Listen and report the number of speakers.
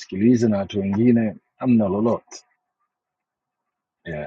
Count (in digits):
1